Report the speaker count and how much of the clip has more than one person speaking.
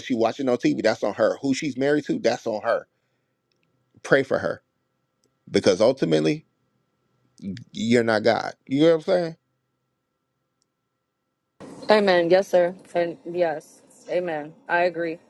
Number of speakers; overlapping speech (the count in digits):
2, no overlap